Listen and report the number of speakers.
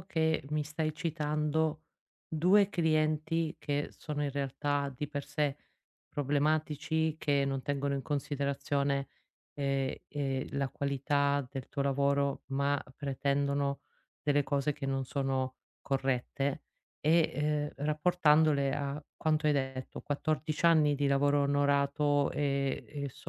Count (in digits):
1